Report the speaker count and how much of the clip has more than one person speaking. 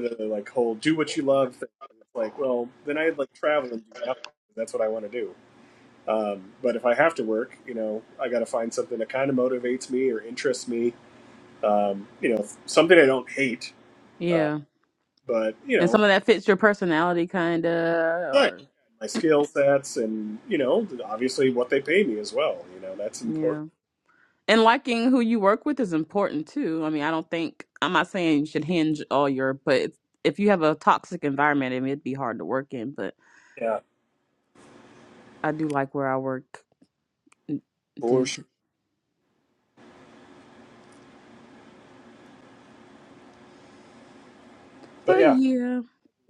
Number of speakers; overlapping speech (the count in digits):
2, about 3%